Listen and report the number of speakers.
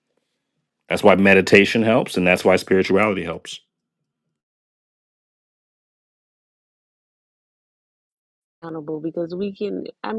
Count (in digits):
2